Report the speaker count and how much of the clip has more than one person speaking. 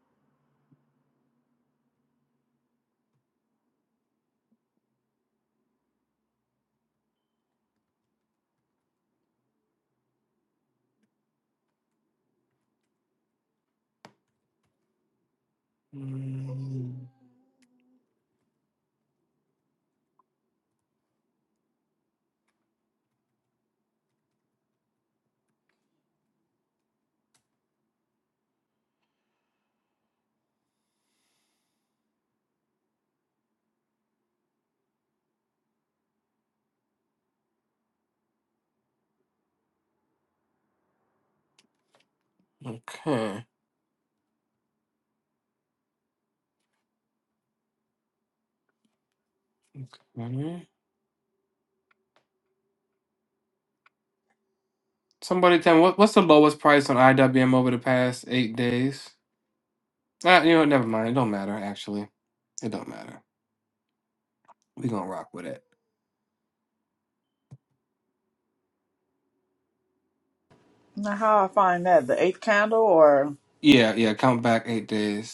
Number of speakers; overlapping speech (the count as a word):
two, no overlap